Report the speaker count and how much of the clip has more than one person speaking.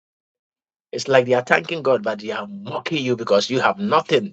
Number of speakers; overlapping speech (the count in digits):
1, no overlap